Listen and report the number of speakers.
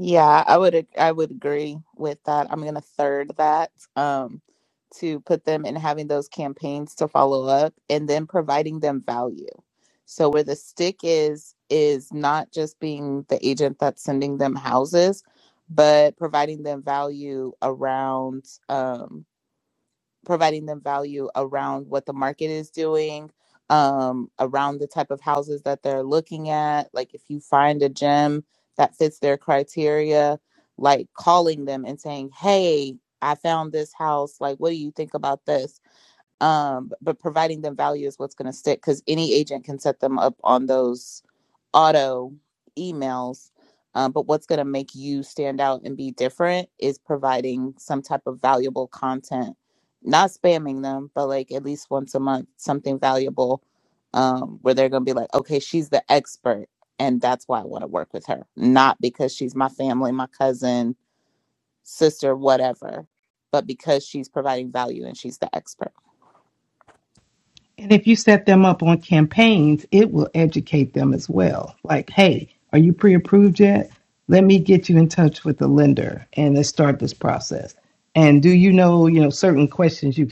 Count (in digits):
2